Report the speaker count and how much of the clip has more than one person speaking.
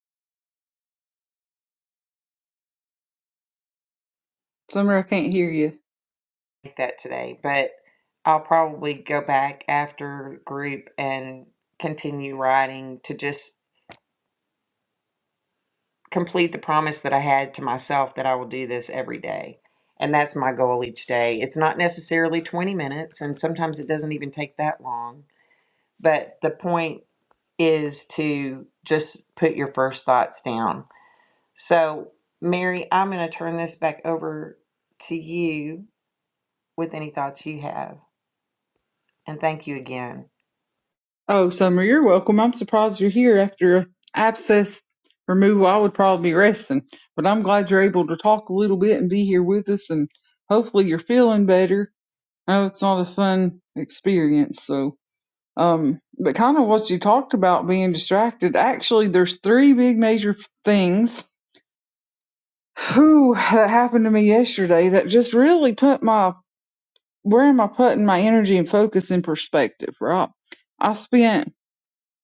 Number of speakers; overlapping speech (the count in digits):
2, no overlap